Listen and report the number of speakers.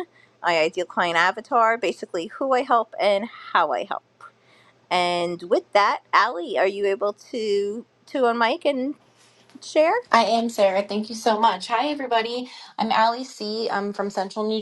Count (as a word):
two